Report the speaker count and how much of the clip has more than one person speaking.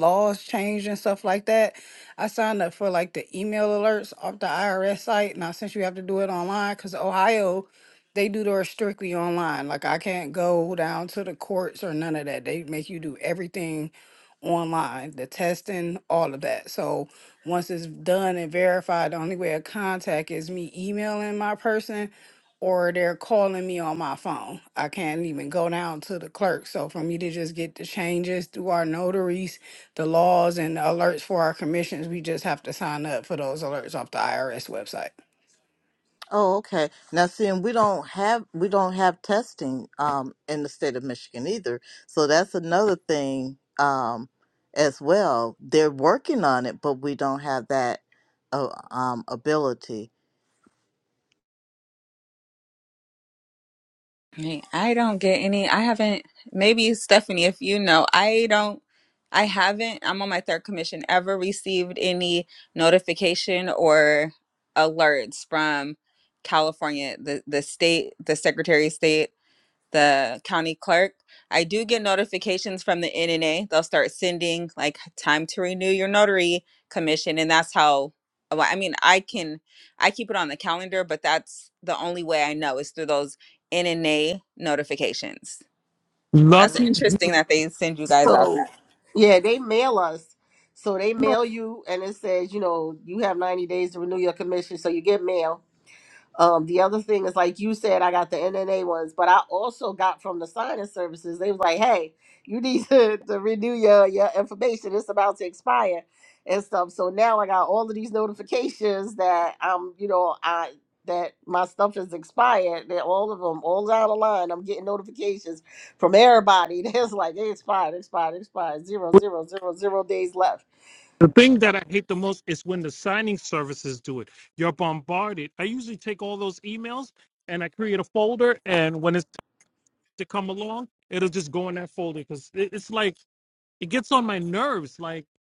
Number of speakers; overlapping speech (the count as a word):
five, about 1%